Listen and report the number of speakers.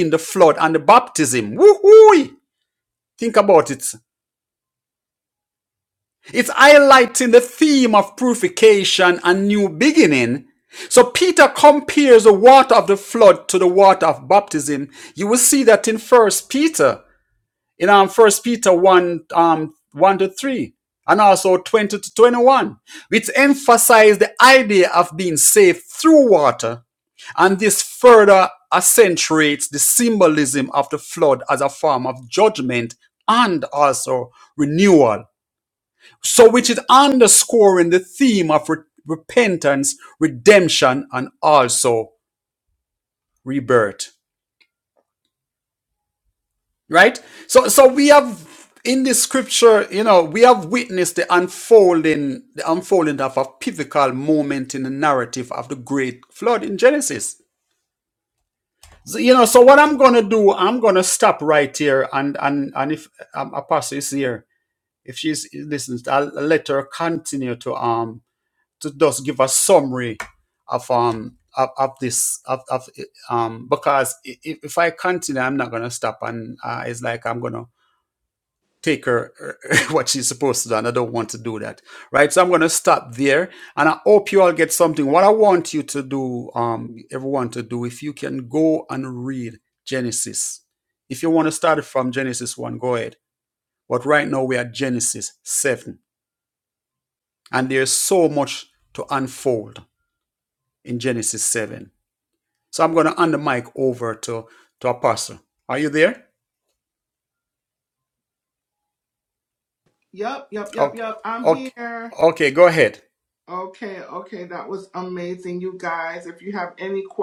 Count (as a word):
two